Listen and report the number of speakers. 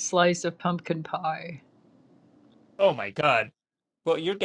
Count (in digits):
2